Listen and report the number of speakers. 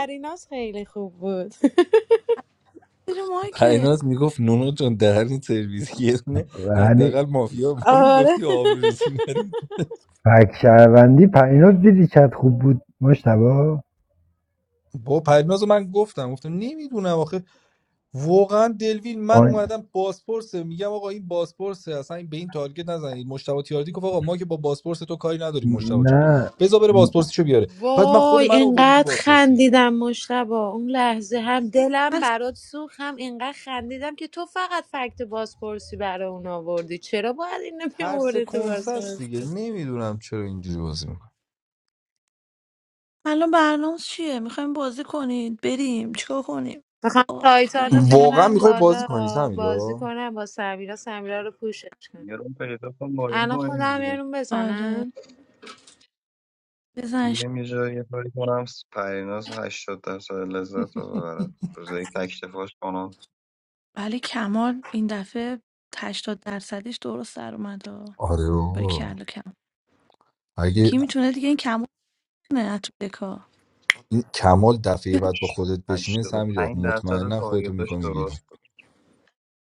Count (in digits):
5